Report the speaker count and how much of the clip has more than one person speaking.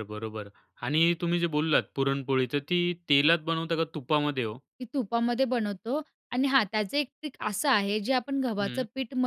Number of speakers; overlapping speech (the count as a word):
two, about 3%